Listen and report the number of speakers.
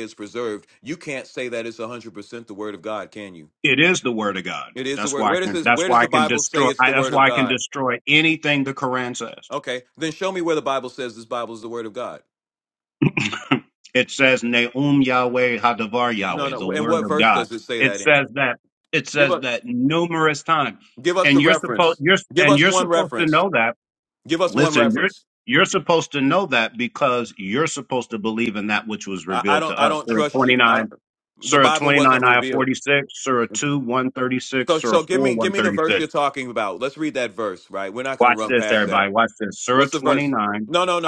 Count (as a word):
two